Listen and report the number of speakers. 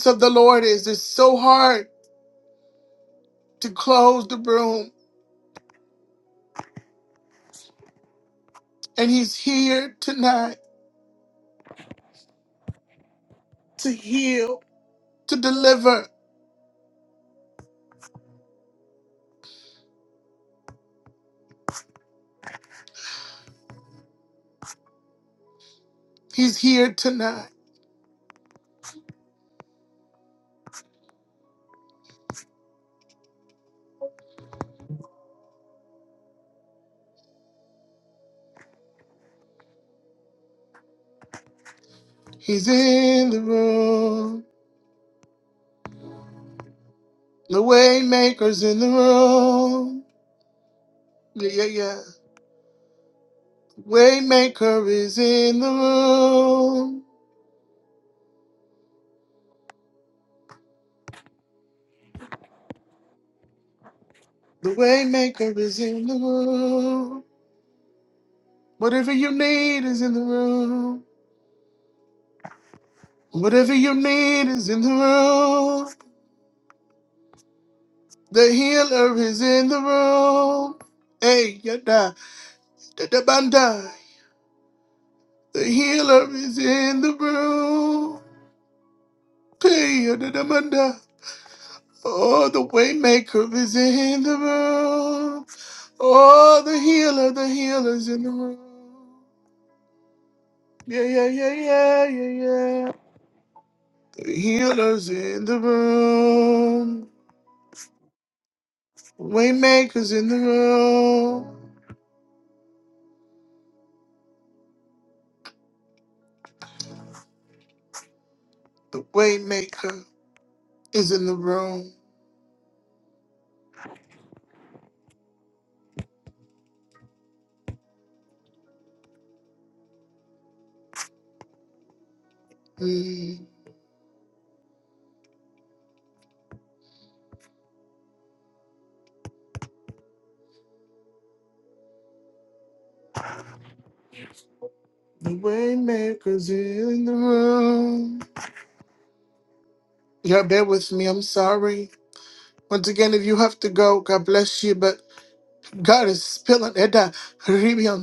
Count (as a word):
one